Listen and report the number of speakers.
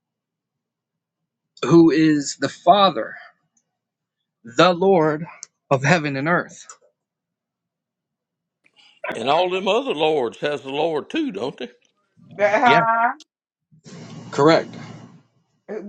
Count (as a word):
three